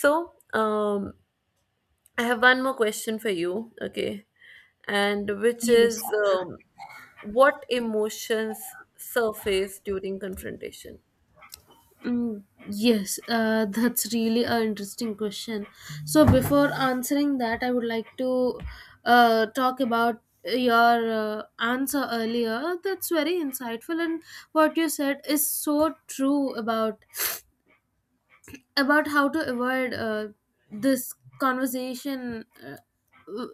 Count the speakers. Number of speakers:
two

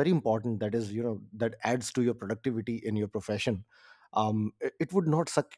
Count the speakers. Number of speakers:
one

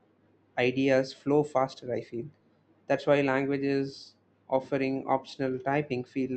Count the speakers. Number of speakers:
one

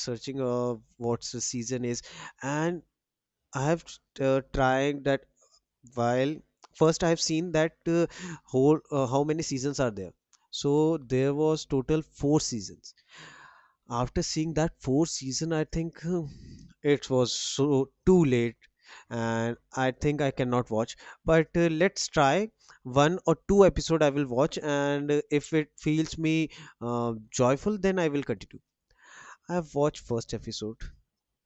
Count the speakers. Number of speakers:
one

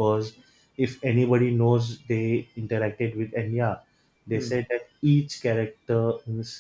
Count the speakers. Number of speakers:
one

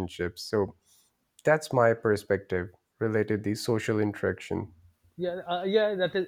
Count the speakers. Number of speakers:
two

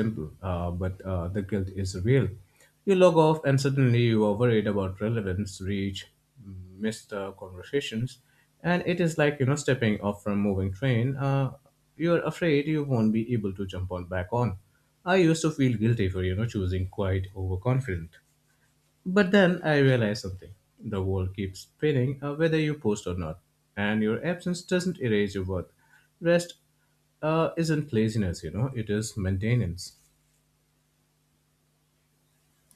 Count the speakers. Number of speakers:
one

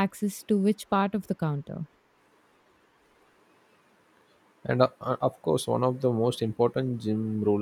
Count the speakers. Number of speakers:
two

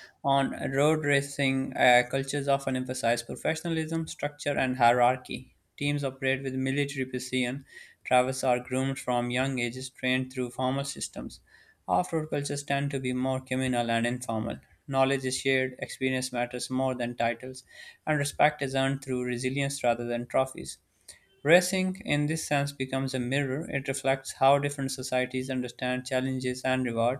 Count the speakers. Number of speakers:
one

